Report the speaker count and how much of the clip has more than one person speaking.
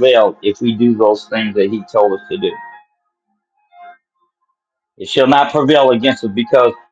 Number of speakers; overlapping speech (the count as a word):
one, no overlap